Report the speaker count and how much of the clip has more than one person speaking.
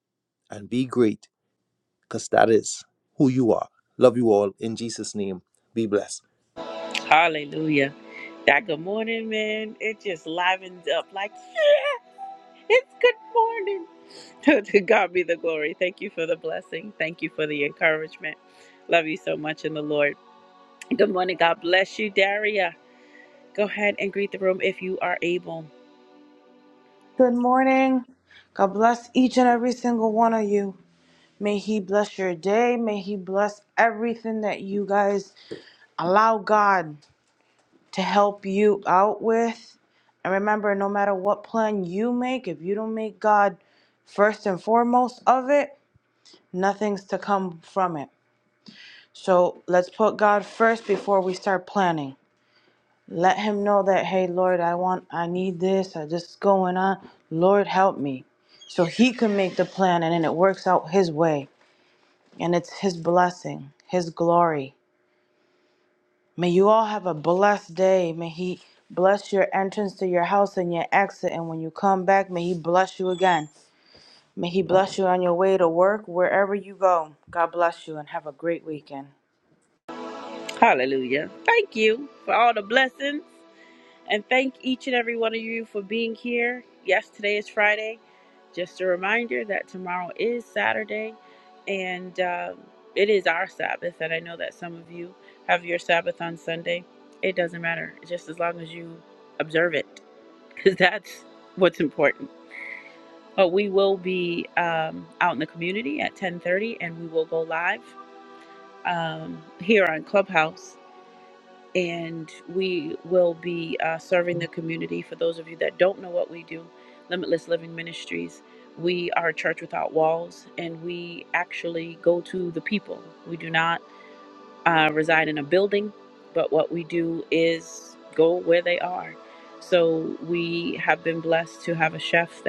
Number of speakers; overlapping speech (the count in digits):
3, no overlap